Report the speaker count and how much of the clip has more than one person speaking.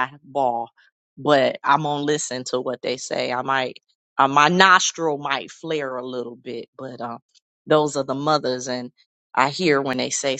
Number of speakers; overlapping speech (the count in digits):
1, no overlap